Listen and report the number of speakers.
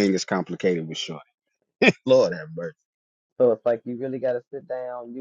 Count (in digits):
2